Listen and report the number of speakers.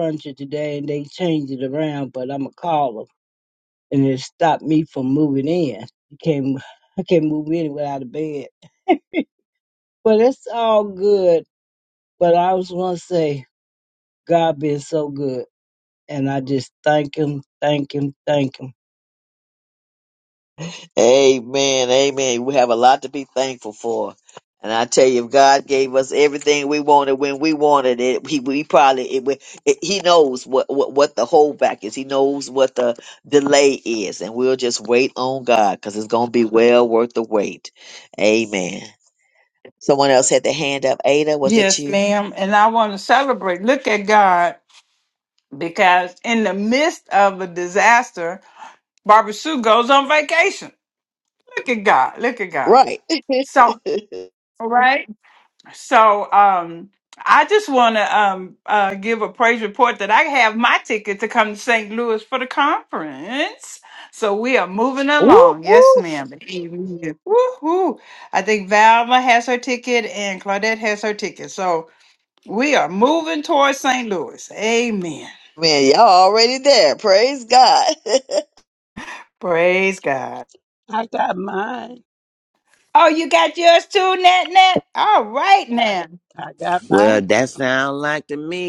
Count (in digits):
5